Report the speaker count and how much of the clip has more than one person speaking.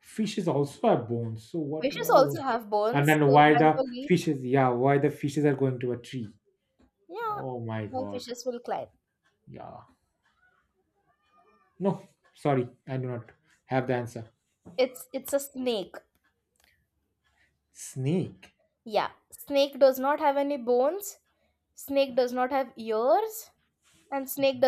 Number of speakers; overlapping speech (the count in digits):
2, about 9%